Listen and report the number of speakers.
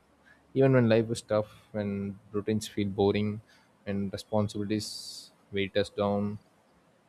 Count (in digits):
1